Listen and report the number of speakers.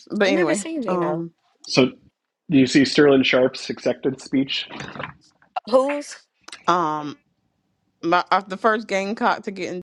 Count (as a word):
three